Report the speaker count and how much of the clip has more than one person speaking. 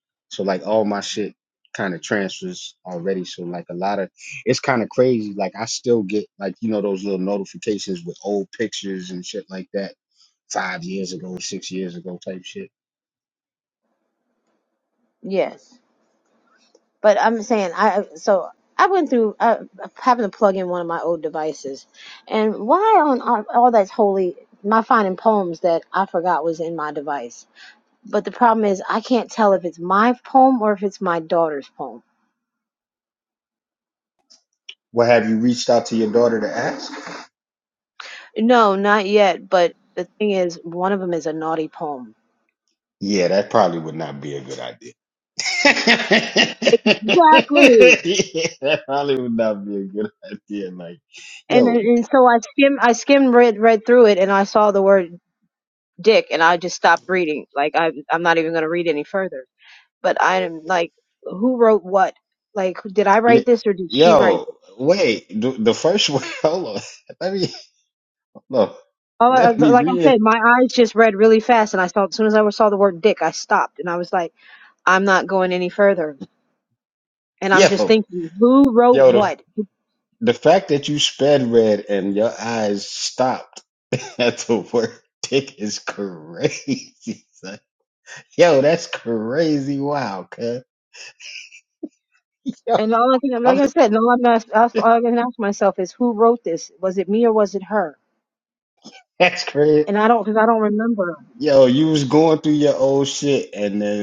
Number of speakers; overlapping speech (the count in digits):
2, about 3%